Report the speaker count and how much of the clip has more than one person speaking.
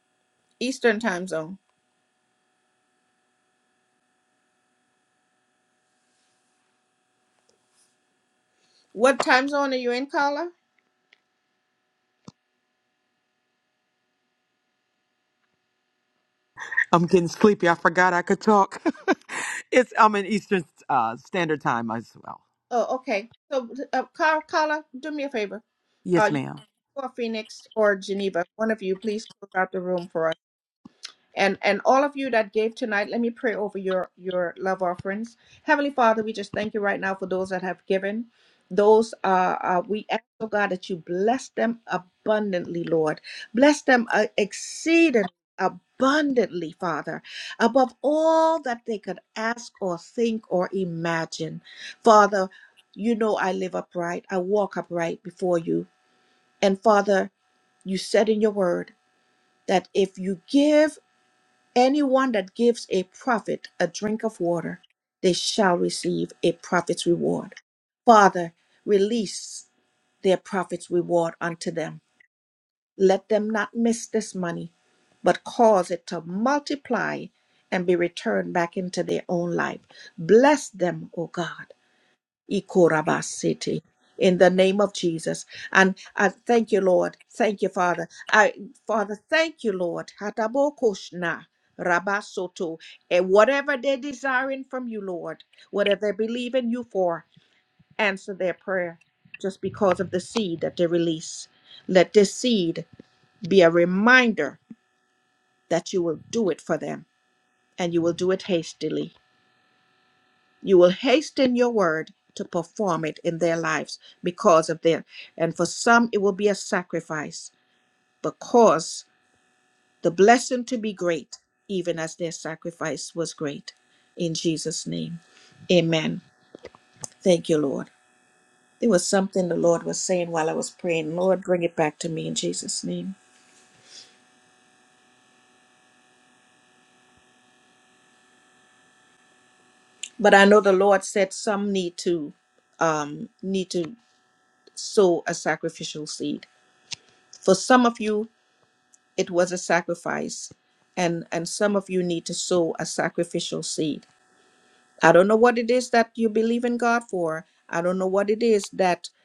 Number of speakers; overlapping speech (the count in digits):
2, under 1%